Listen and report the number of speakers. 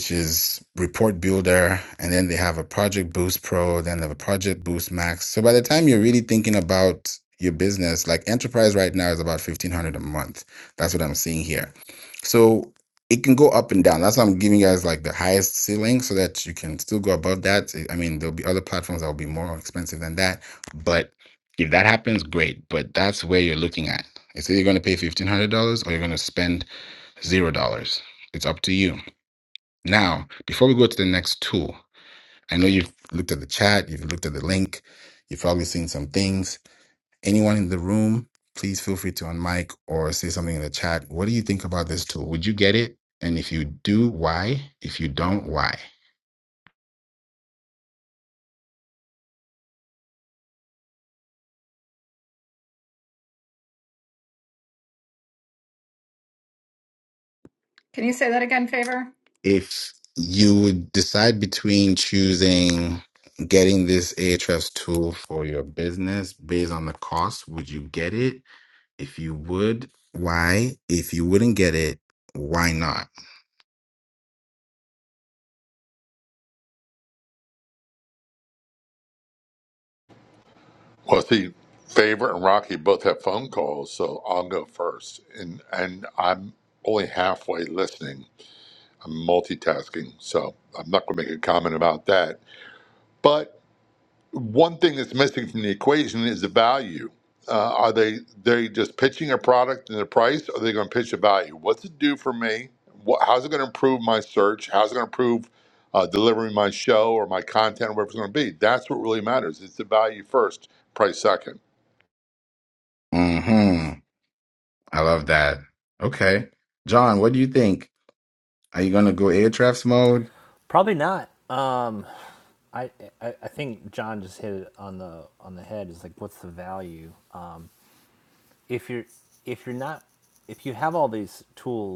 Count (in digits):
4